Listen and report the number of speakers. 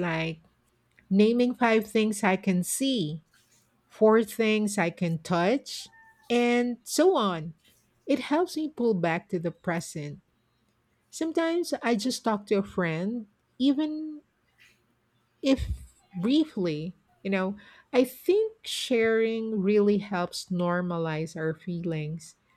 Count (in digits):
1